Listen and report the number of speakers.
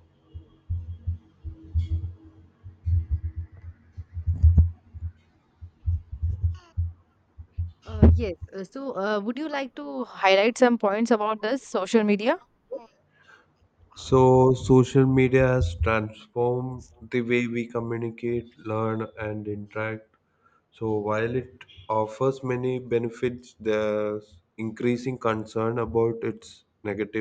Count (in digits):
2